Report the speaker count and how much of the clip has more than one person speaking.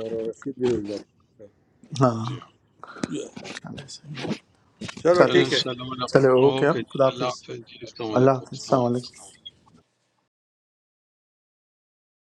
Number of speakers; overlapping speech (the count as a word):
three, about 17%